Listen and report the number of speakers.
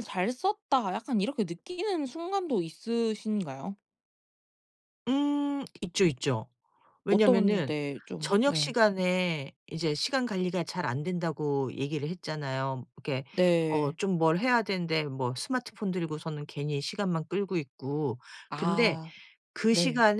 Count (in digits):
2